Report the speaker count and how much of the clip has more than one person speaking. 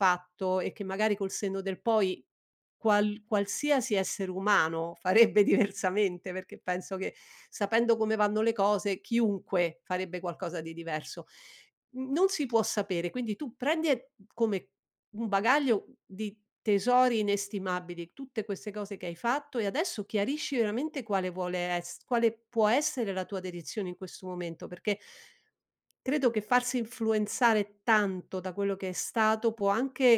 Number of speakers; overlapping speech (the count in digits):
1, no overlap